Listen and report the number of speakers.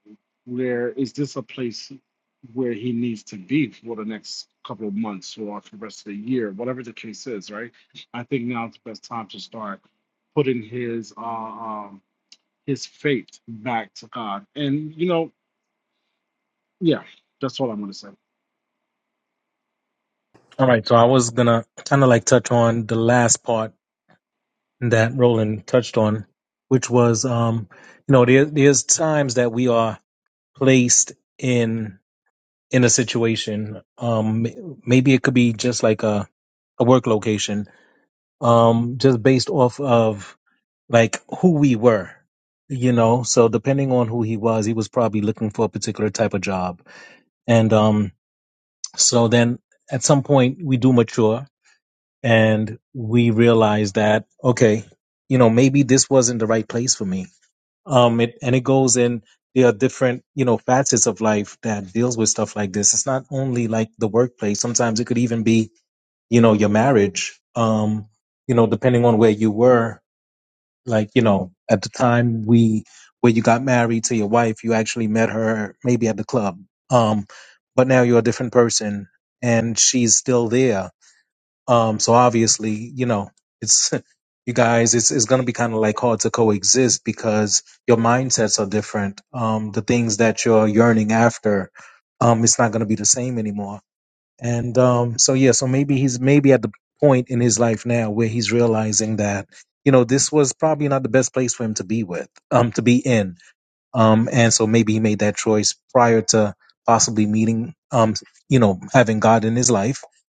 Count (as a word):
two